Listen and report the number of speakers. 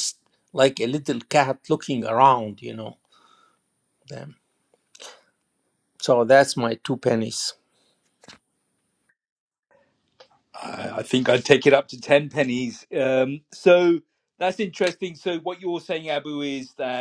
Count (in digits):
2